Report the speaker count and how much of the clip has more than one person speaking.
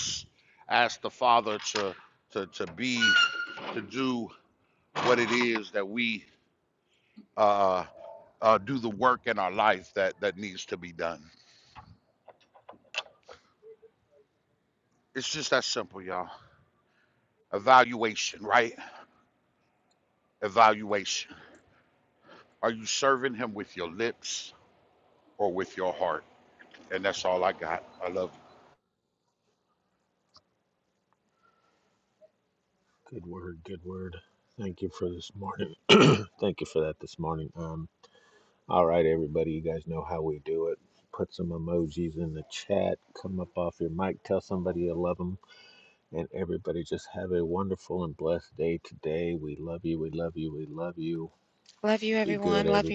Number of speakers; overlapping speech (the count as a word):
three, about 1%